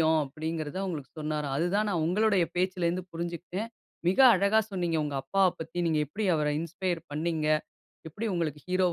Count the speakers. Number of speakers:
1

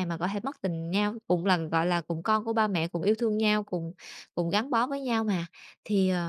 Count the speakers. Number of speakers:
1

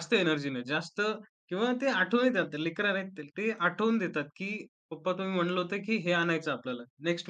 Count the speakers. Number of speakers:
1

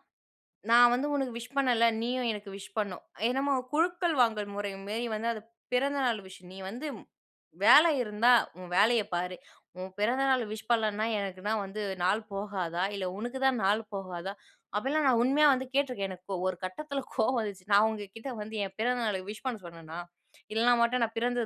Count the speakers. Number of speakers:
1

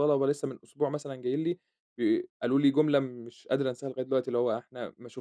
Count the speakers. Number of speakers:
1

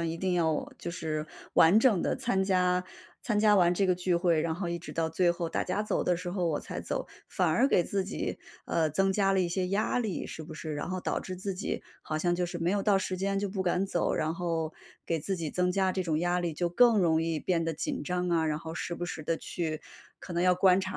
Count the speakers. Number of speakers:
1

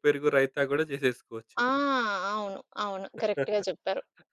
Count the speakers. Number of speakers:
2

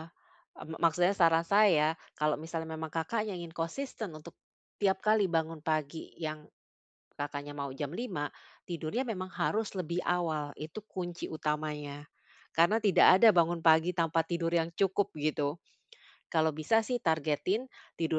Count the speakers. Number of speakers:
1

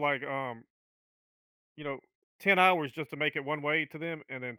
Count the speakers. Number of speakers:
1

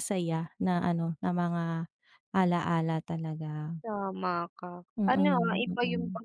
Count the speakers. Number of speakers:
2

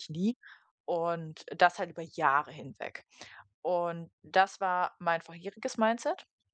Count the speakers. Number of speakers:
1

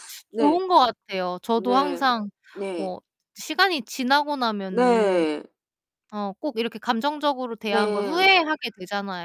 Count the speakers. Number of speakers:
2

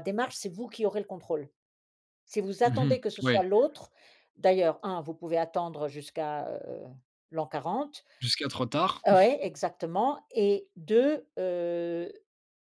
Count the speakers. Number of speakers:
2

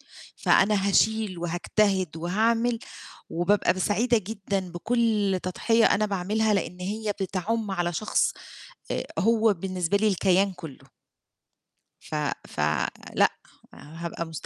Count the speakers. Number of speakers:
1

